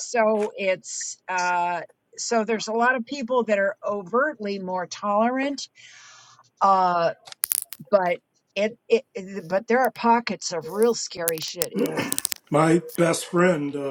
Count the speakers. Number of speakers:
2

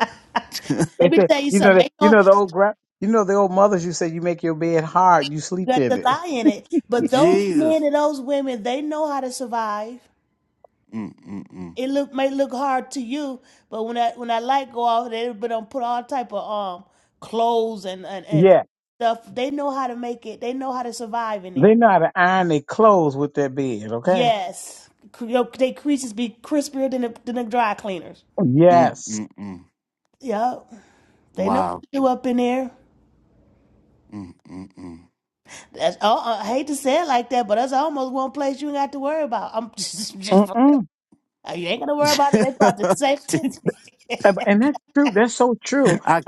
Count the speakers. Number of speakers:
3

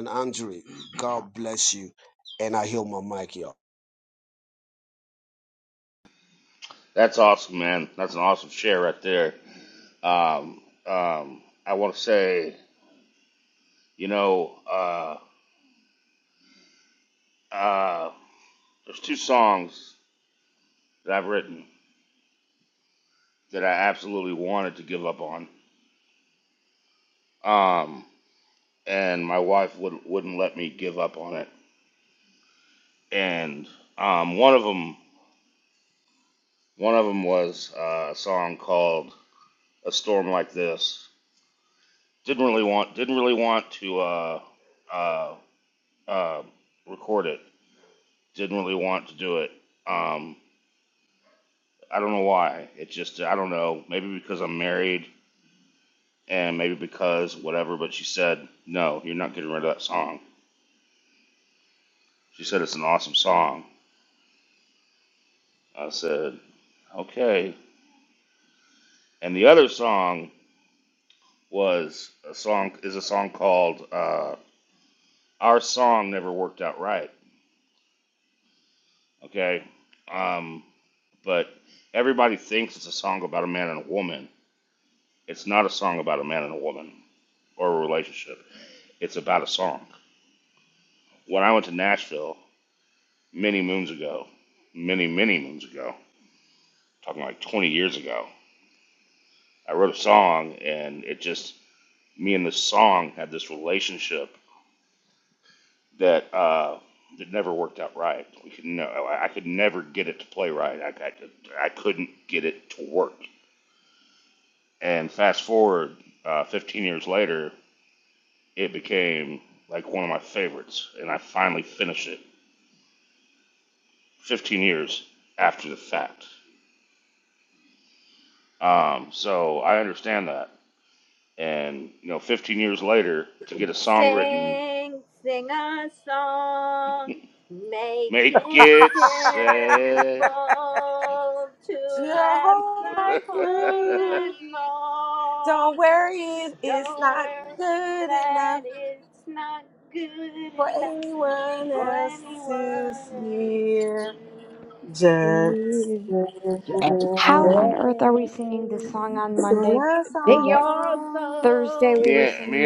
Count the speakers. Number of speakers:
5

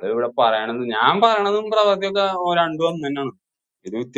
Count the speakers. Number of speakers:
1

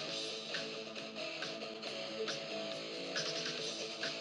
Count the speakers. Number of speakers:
0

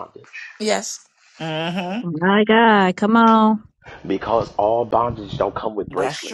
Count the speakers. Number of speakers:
3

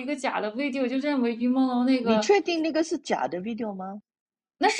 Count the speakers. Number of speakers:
2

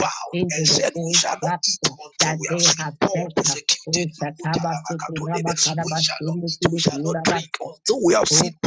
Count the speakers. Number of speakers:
2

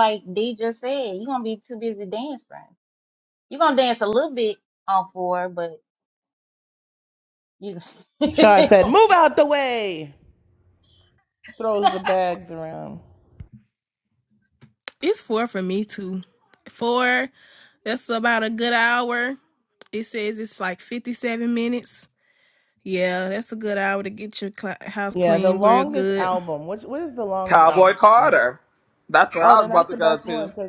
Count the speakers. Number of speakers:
4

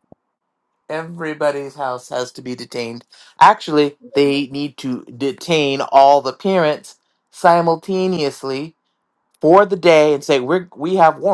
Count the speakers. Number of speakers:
1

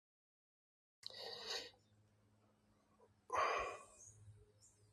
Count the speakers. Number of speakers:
0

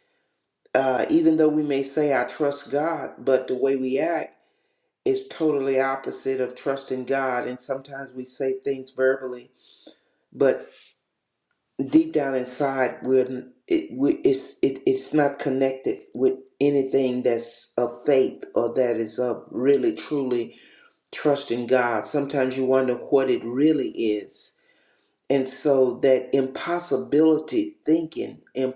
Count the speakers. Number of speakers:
1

